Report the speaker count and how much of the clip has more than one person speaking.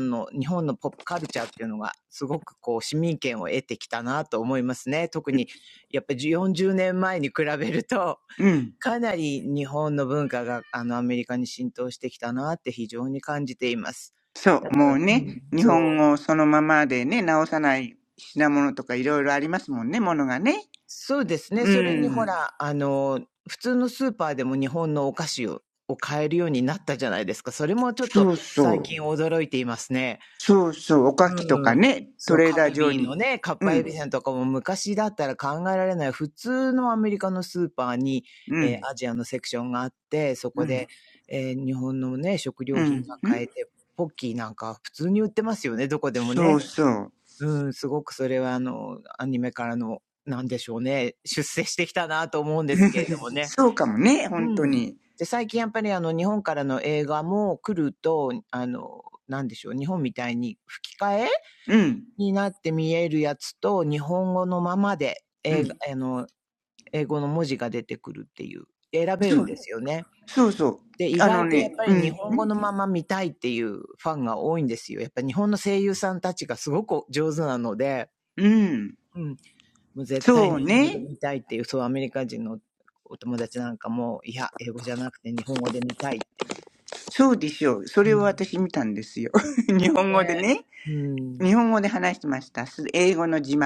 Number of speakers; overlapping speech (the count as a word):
two, about 10%